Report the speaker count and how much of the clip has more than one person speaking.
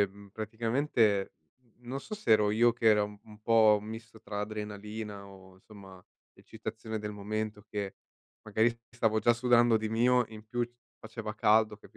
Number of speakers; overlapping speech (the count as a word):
one, no overlap